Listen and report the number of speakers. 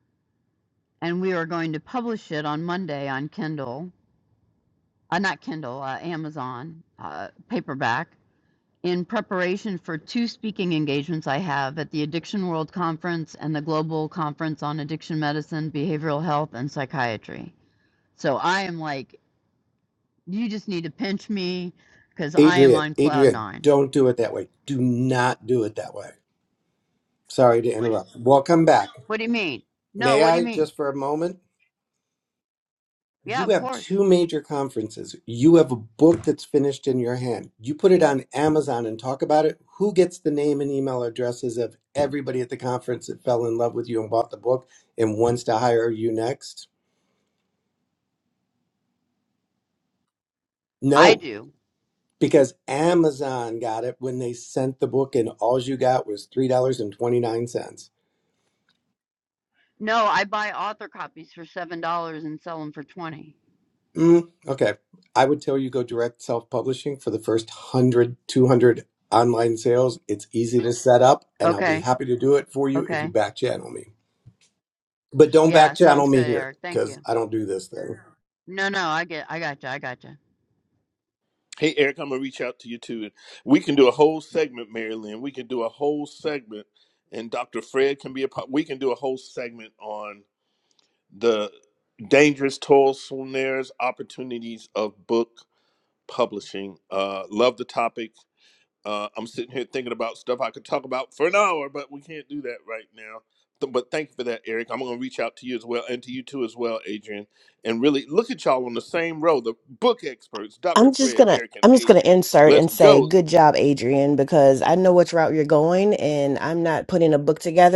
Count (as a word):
four